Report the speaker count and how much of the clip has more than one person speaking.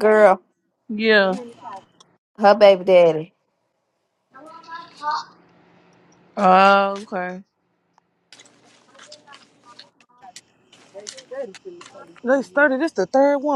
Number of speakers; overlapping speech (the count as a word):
three, no overlap